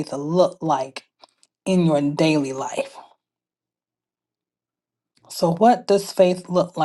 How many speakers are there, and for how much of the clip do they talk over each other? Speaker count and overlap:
1, no overlap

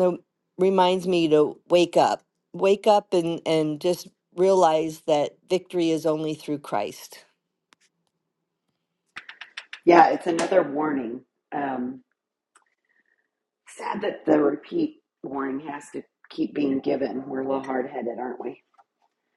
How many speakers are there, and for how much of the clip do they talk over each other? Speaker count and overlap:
2, no overlap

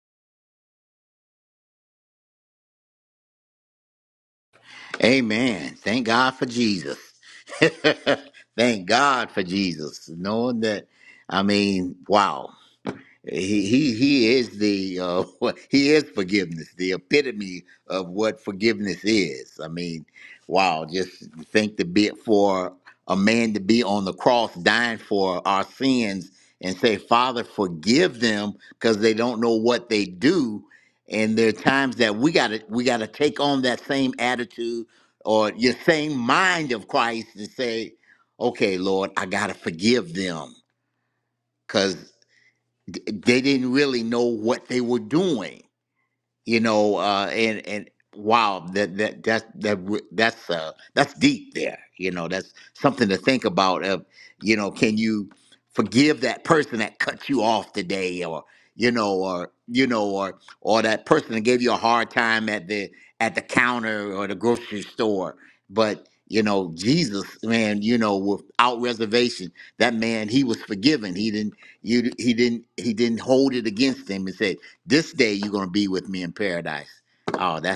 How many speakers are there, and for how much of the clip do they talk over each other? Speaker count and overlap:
1, no overlap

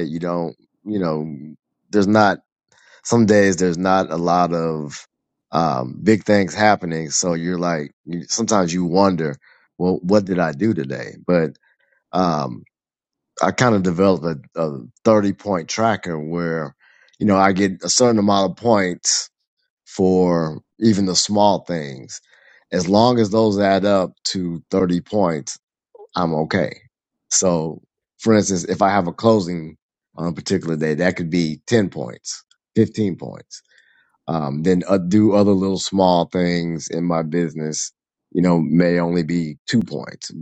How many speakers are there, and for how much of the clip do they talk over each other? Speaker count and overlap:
1, no overlap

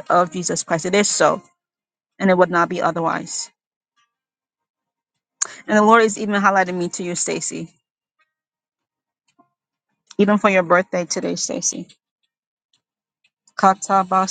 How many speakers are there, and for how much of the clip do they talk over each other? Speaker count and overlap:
1, no overlap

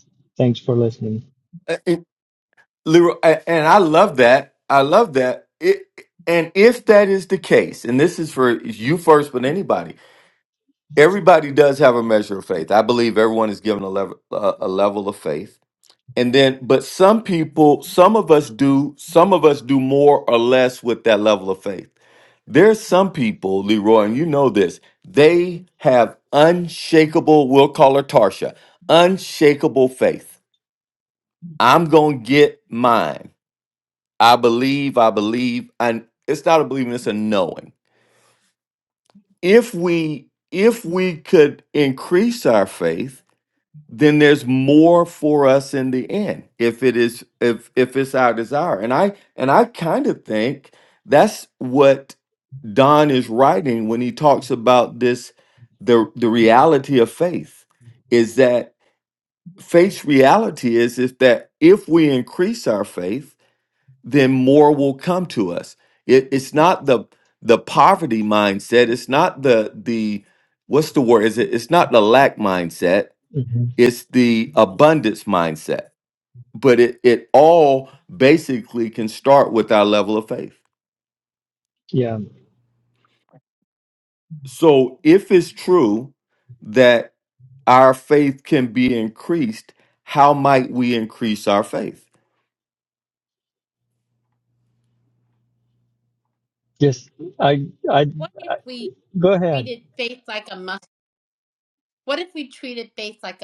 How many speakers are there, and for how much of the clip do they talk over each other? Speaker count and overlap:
3, under 1%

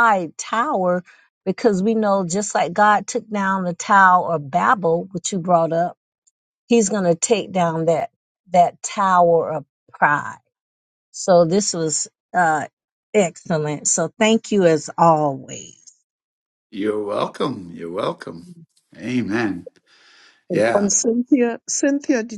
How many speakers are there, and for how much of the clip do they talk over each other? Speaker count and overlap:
3, about 1%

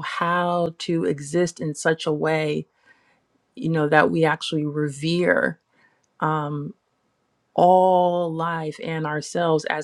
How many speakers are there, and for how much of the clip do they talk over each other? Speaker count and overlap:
1, no overlap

